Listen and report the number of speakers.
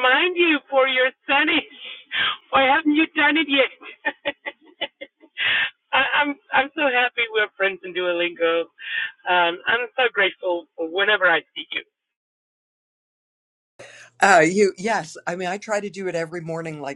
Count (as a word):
two